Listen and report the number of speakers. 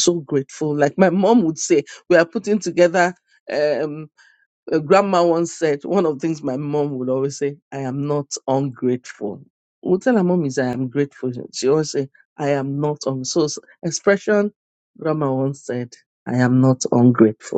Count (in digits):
1